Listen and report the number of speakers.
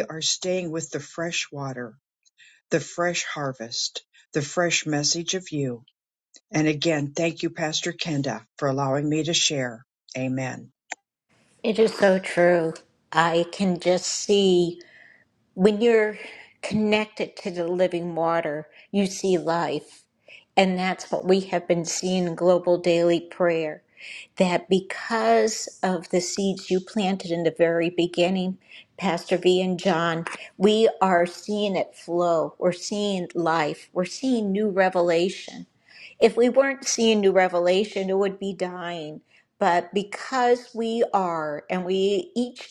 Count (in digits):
2